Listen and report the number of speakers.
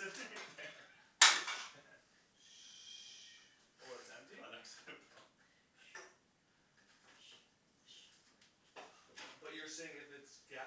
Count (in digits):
2